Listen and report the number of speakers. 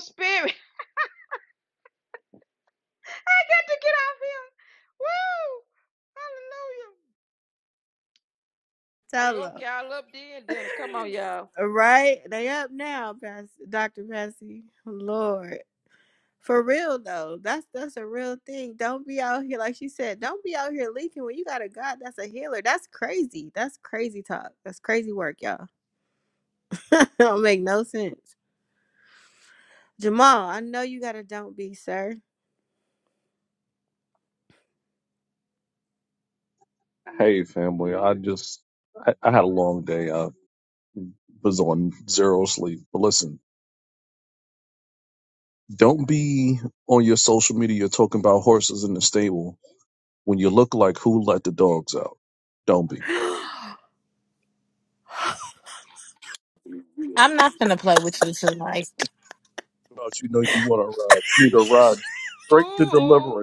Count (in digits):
4